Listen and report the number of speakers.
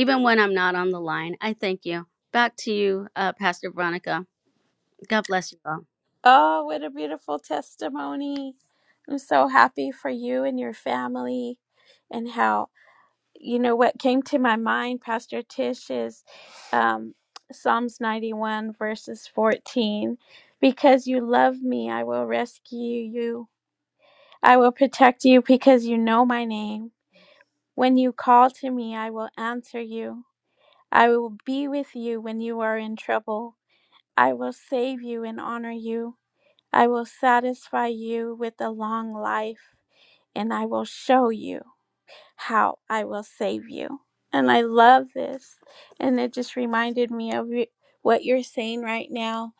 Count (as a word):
two